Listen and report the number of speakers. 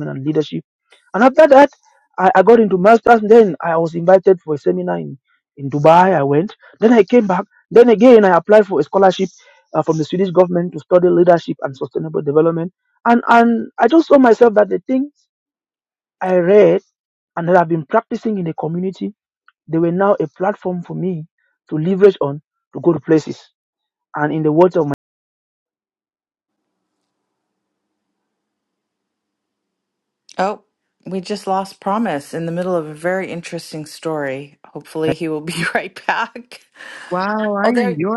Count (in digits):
3